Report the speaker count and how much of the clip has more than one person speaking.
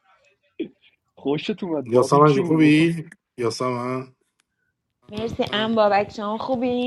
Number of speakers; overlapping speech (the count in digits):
3, about 12%